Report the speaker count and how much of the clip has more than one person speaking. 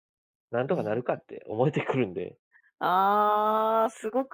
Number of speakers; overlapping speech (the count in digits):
2, about 3%